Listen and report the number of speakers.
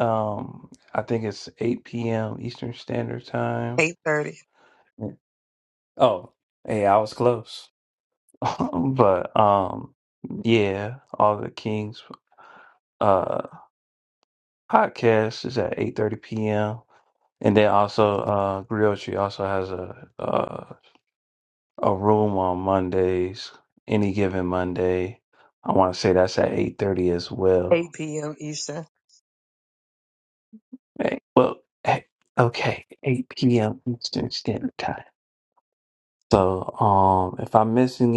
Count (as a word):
two